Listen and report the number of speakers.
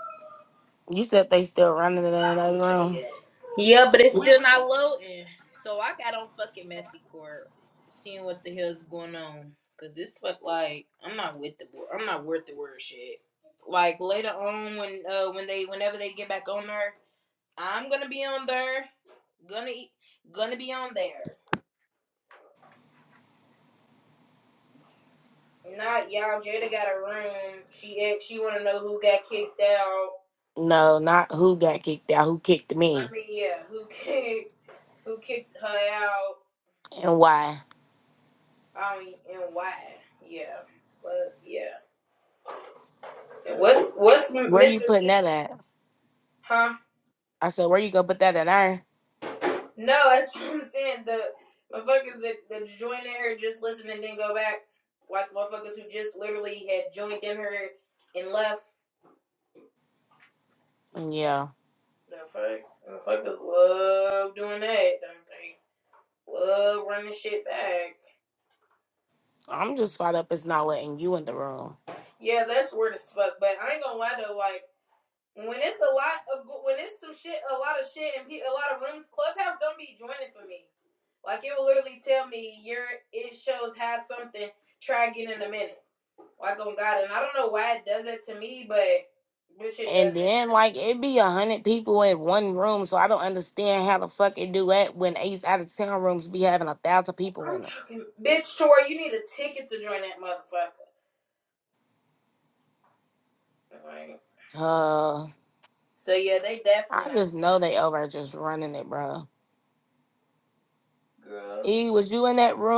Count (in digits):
2